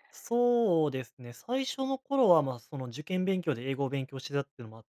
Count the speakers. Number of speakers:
one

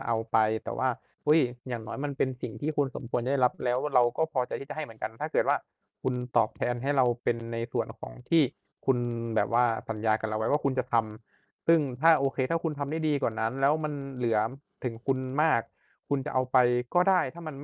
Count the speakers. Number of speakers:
one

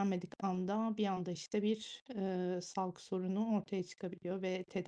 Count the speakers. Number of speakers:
one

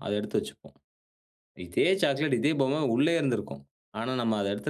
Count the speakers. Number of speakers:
one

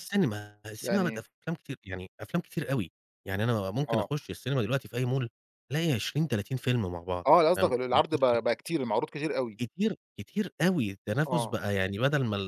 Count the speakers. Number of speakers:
two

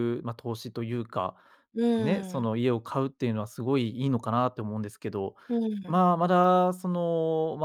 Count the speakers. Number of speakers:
two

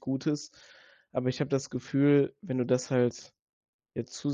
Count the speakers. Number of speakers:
one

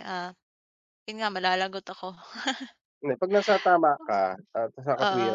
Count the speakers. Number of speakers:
two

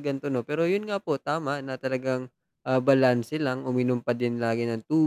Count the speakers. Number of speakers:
one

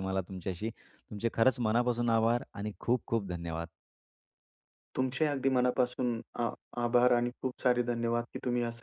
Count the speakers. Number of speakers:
two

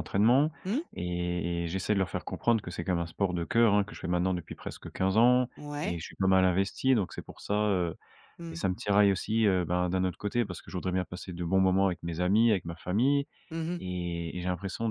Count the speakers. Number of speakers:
two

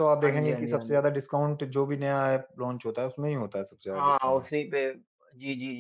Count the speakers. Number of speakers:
two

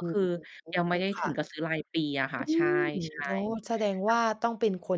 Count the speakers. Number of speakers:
two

